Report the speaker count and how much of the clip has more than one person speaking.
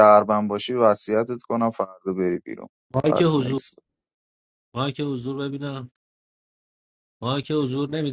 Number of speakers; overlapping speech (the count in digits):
2, about 6%